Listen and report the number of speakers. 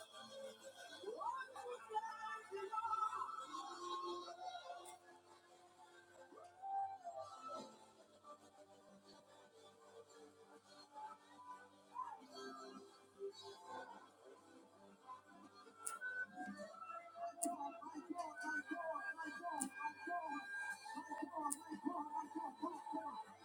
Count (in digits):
0